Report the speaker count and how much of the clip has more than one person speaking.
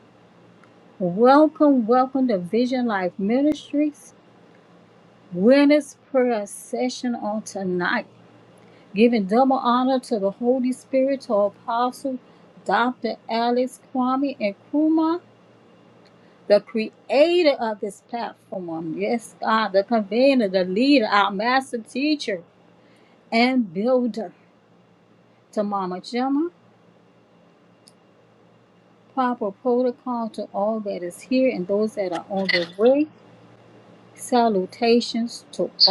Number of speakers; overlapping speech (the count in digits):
1, no overlap